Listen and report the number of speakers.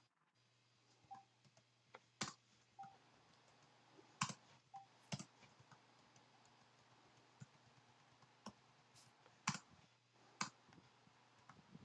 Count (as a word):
zero